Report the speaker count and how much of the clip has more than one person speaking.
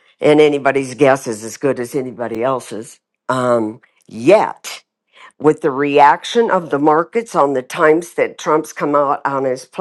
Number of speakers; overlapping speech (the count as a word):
one, no overlap